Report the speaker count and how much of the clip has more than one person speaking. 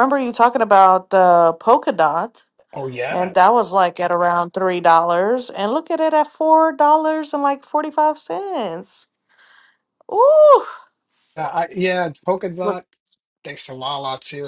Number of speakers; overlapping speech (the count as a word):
two, about 2%